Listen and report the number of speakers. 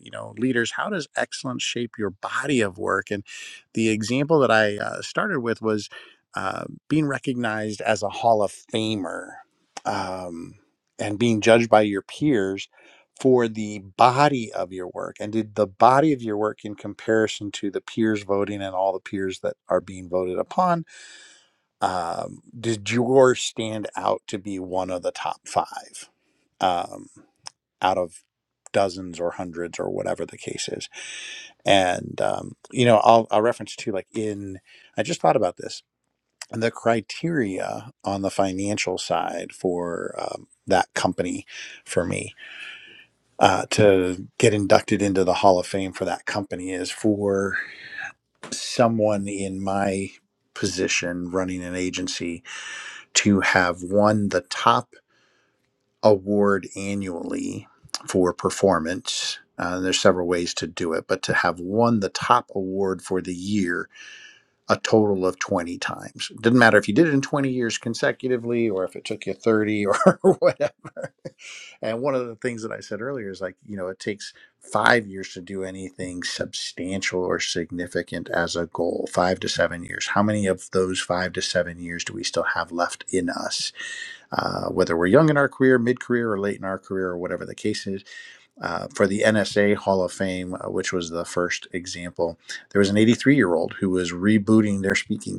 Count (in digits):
1